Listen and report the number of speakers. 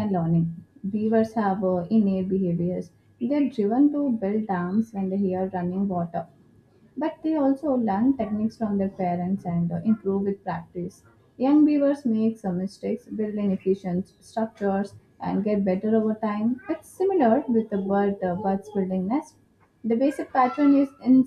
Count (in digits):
1